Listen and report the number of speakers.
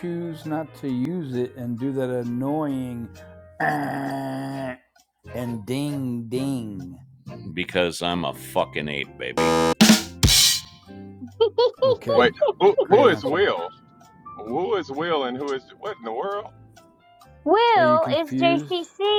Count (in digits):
4